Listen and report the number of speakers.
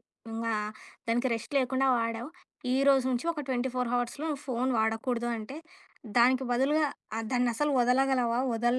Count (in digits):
1